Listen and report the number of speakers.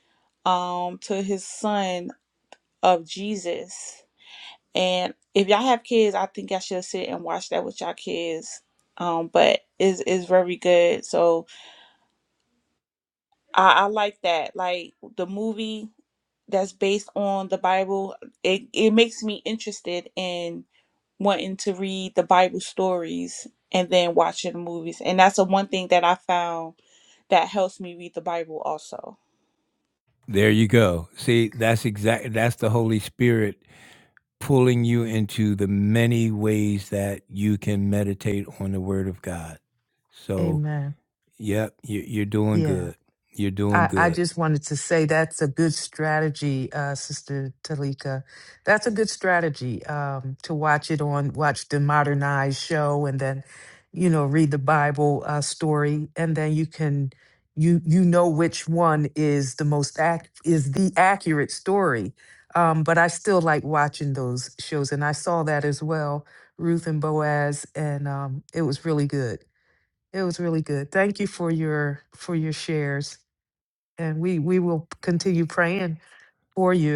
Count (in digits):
3